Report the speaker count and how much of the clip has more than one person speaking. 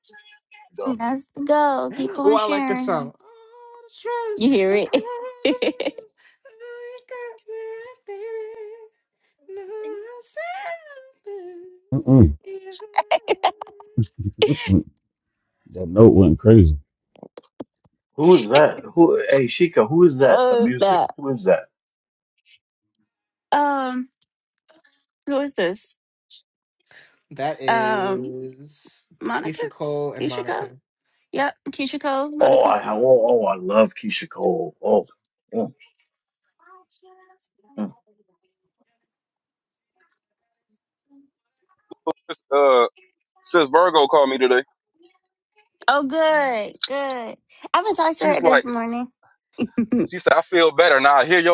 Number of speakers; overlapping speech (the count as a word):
five, about 9%